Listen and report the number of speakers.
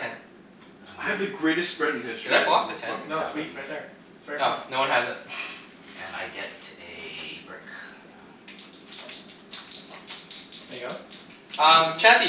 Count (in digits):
4